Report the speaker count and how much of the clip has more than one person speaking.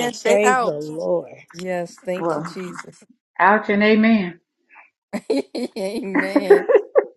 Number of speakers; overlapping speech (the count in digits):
3, about 16%